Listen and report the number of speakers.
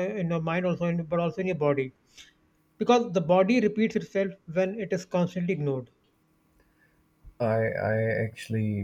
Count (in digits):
2